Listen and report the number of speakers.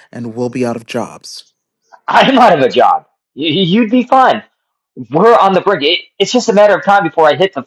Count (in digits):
2